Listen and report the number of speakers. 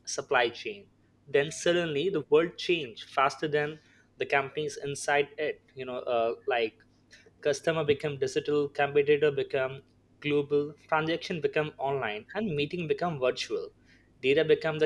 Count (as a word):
one